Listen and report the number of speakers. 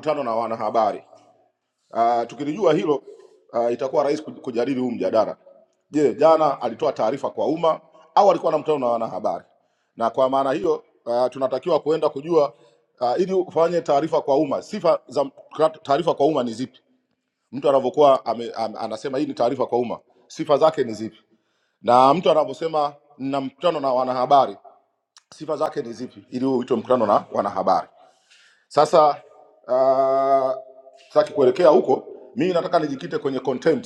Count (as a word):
one